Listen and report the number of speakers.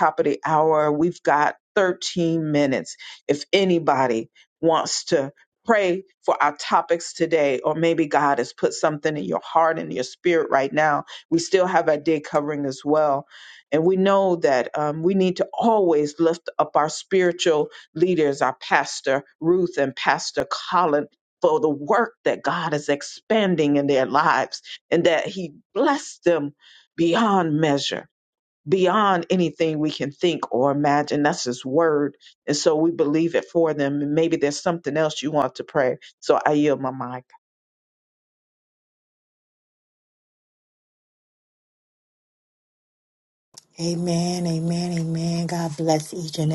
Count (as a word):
two